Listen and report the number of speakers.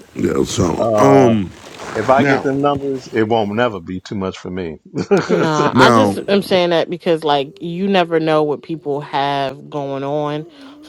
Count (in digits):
3